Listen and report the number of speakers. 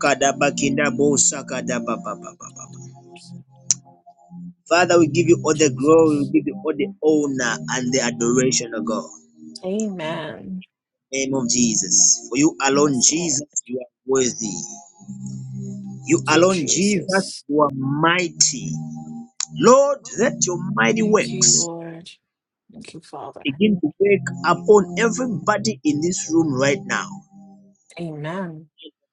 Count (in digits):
2